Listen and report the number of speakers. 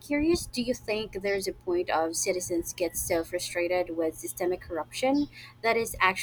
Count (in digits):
1